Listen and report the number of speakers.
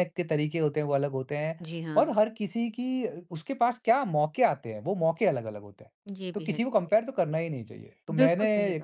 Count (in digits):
2